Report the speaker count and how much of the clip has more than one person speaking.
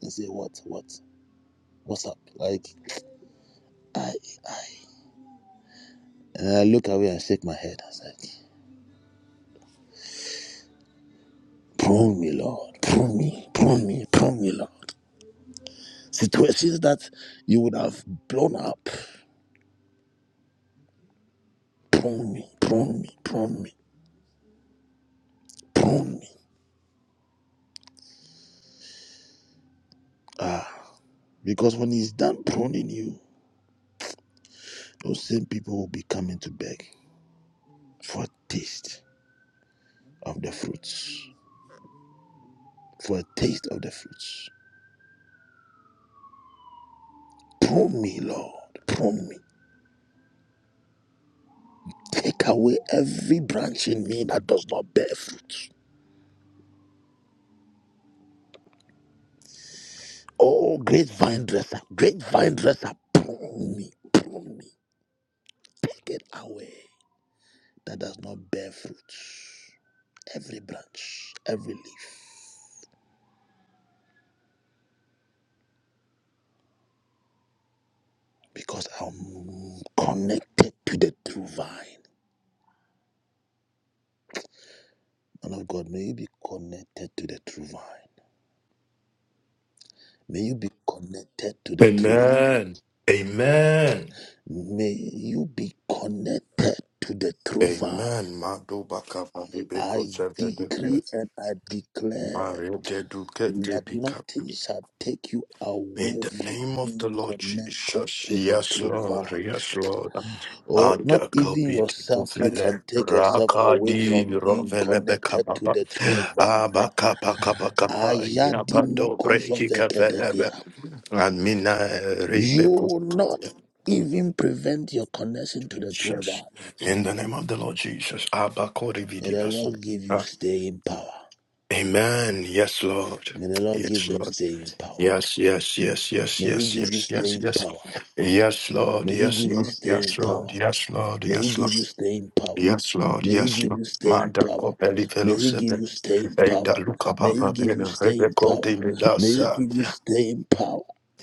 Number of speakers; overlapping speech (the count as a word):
two, about 16%